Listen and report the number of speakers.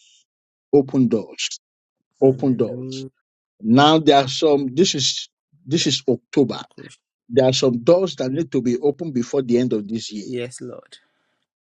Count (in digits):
2